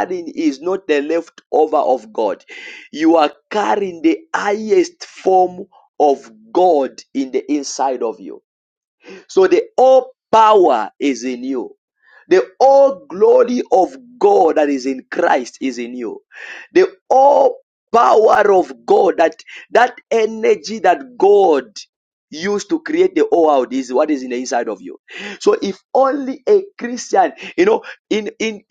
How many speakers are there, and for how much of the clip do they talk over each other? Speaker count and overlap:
1, no overlap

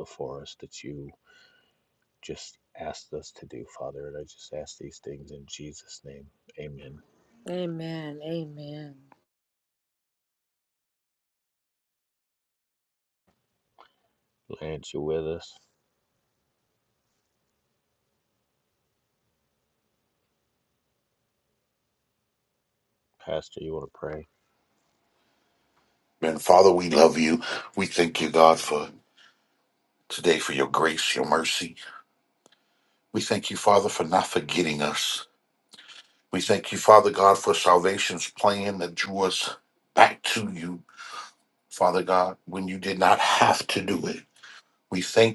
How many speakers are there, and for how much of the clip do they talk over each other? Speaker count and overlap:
3, no overlap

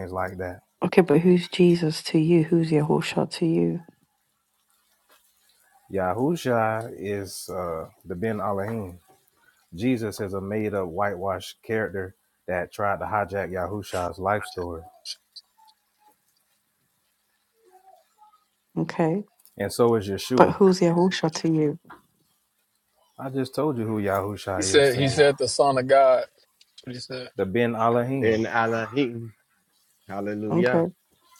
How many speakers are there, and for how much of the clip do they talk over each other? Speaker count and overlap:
4, about 5%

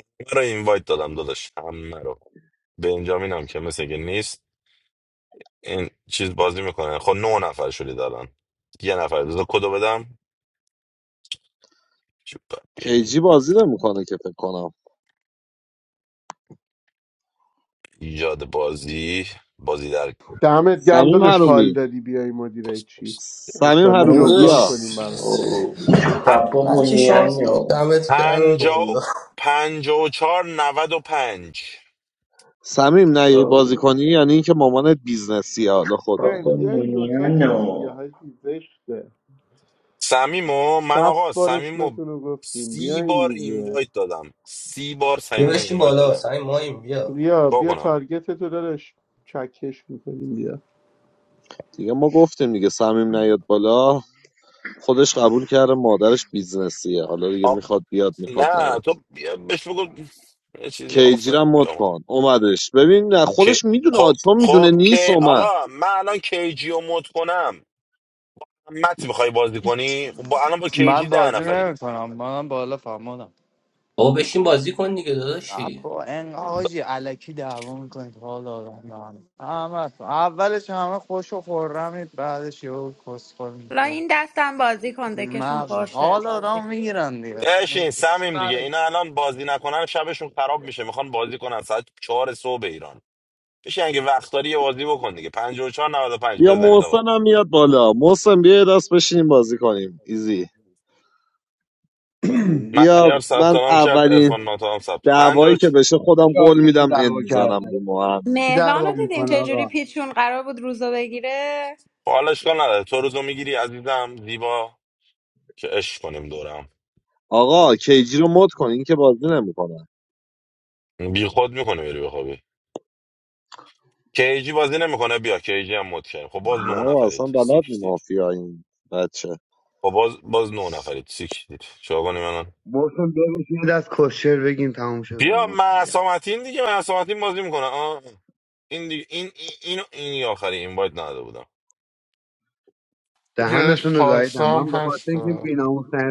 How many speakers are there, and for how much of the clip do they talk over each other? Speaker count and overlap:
8, about 17%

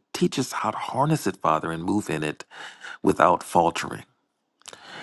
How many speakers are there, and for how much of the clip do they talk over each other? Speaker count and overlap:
1, no overlap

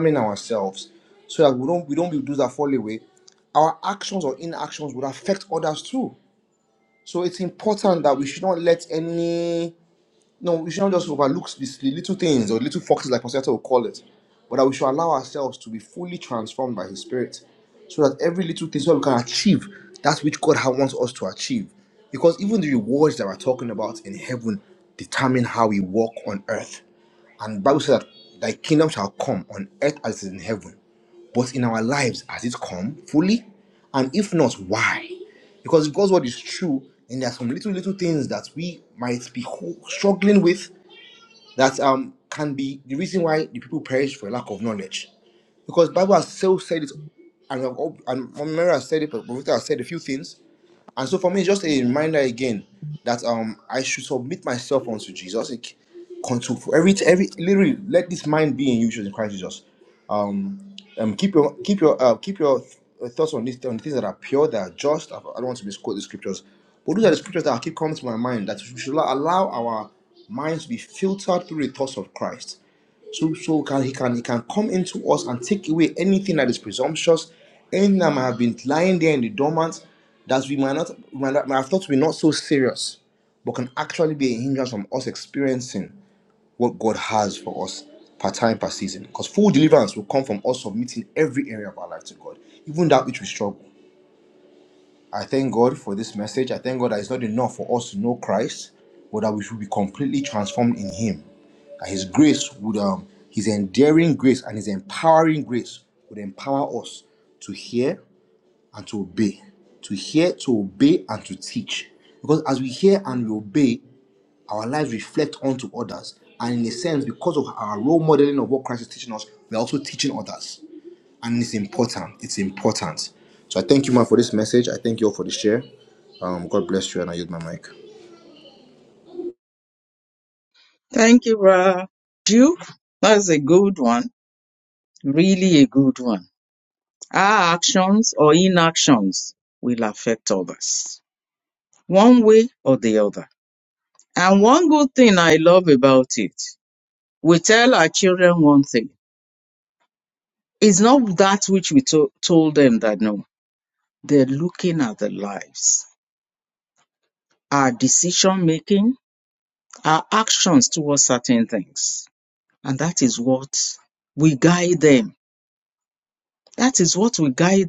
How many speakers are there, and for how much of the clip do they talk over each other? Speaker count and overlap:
2, no overlap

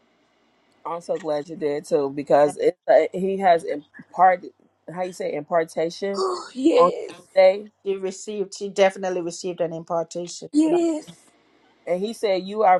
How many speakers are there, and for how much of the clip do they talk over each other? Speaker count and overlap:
3, about 4%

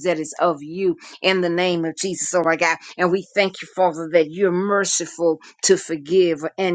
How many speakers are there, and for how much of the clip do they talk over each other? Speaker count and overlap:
1, no overlap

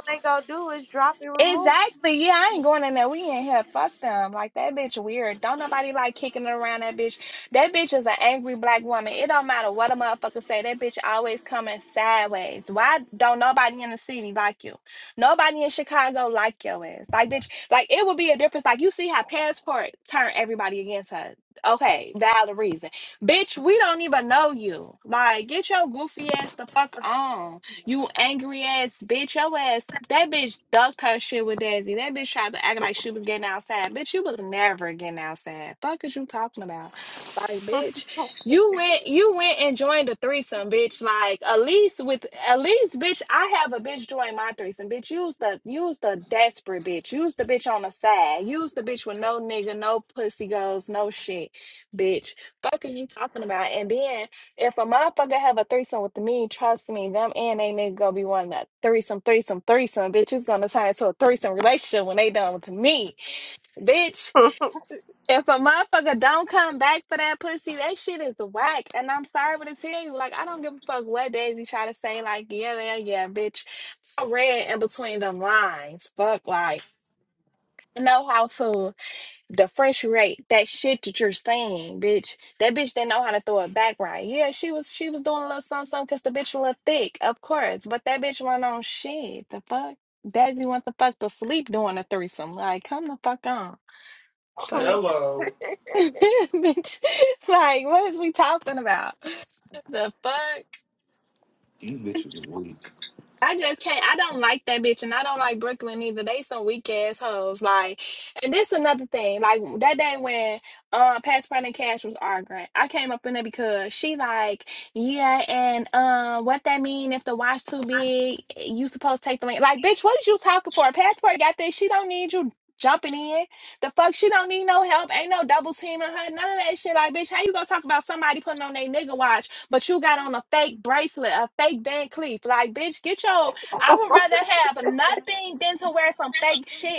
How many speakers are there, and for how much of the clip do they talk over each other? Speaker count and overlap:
3, about 1%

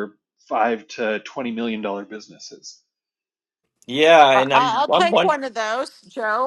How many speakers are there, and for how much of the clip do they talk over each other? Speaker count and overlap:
3, about 15%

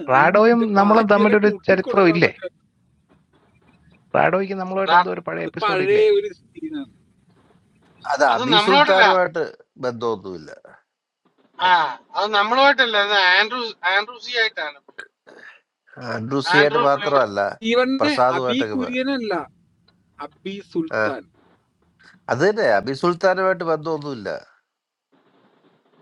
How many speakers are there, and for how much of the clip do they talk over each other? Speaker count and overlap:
4, about 23%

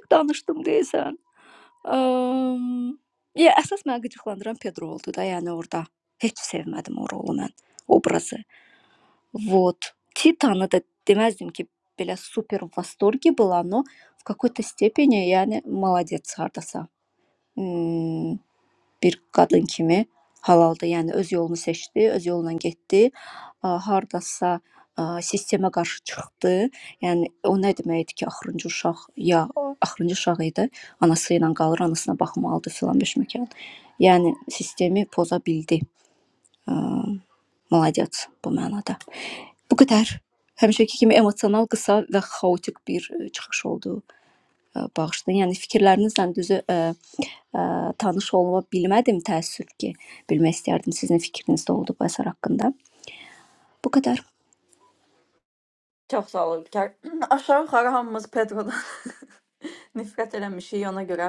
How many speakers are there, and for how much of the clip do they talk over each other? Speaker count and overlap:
2, no overlap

